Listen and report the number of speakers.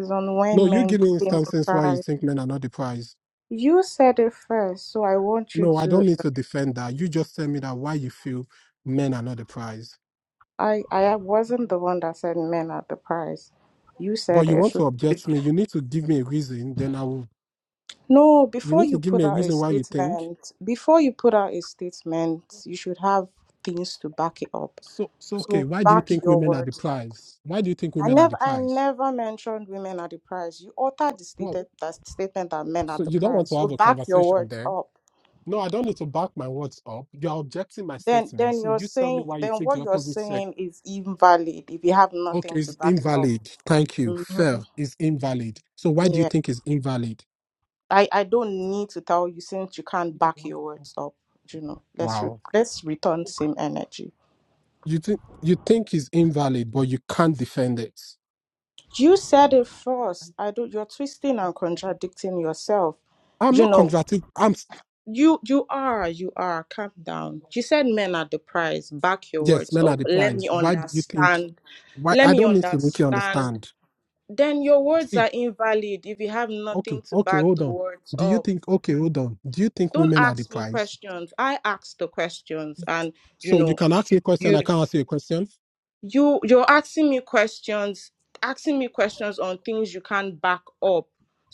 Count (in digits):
2